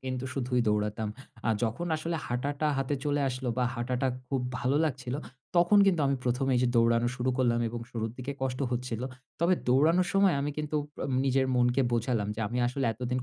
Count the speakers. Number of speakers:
1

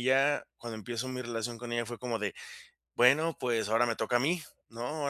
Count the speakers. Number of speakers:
1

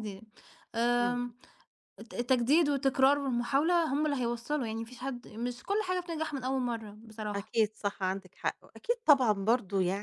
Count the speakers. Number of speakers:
2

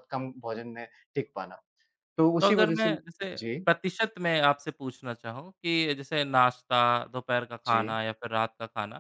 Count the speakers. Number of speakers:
2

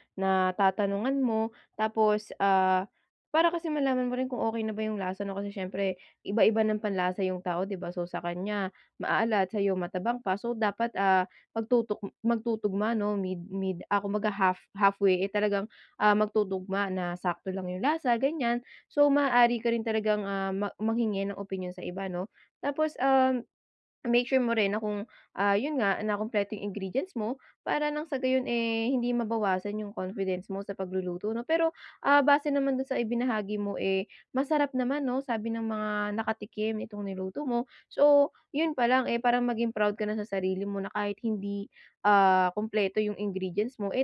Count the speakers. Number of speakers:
1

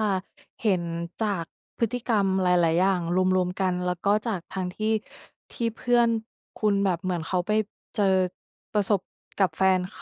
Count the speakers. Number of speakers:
1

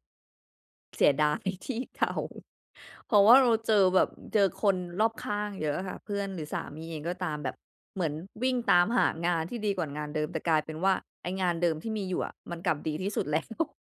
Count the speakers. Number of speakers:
1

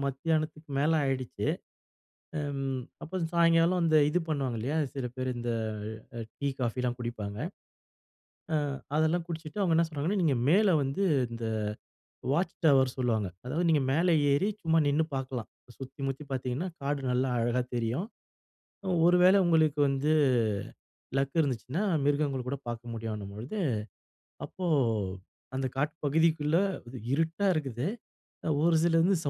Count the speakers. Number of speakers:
1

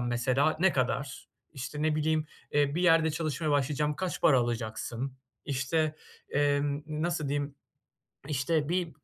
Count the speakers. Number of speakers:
1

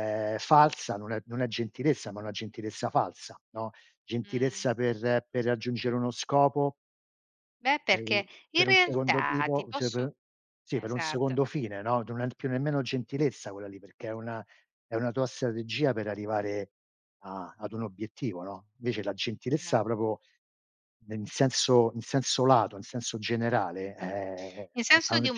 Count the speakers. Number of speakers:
2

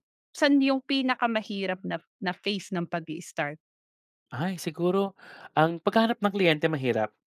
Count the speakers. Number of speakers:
2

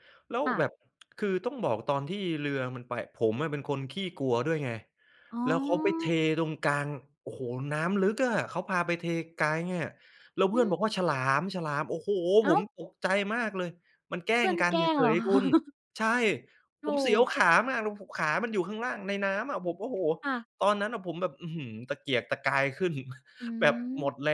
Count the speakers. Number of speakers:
2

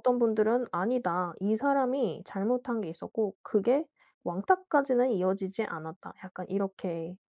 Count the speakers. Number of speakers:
1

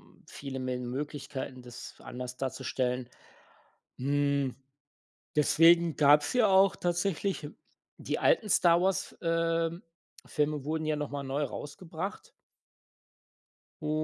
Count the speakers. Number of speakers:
1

